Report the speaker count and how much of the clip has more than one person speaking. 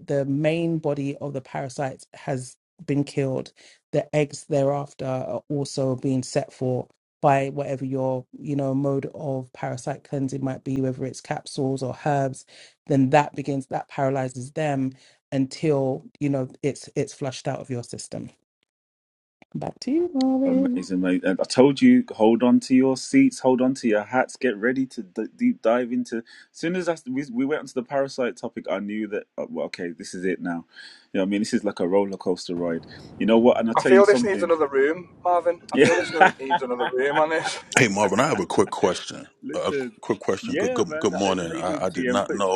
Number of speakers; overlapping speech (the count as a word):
four, about 10%